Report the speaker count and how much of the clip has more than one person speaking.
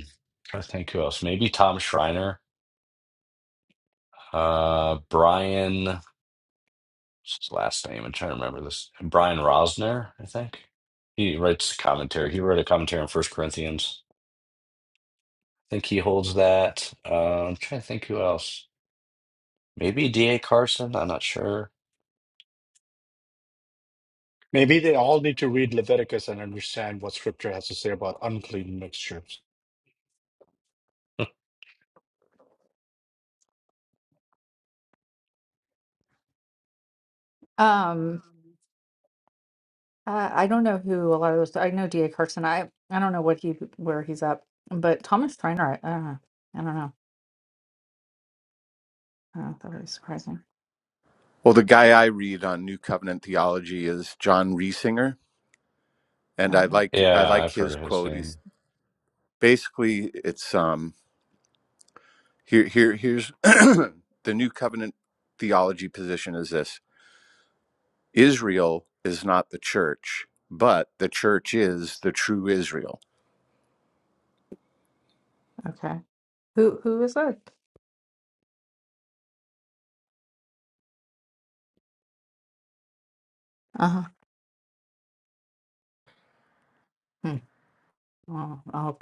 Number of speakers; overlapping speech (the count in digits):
4, about 2%